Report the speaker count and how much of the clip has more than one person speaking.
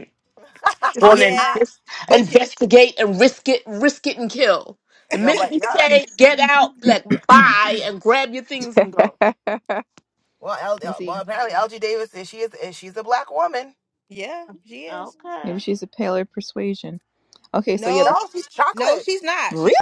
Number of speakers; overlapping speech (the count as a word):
four, about 17%